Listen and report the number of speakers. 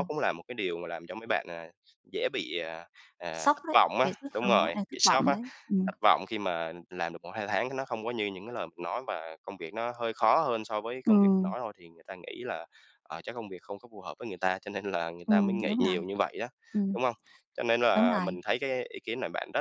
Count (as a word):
two